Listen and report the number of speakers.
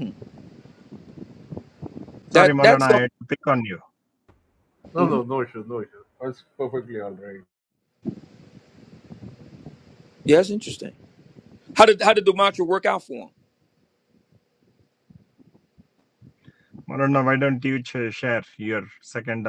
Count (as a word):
three